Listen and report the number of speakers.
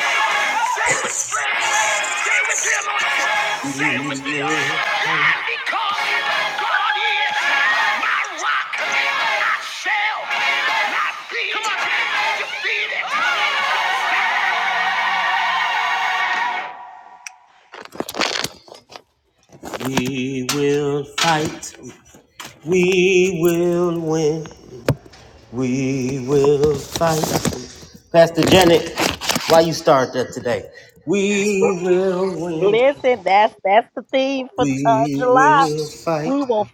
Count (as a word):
three